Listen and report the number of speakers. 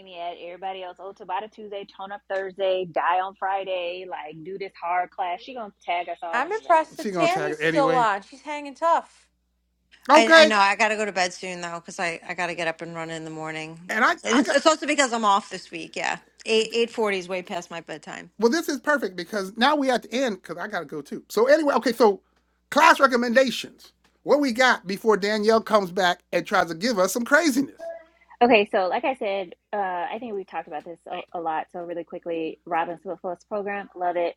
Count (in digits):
4